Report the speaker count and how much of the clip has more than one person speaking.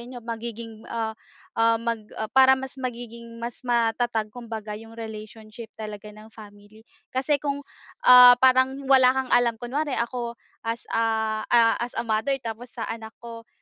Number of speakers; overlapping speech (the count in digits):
1, no overlap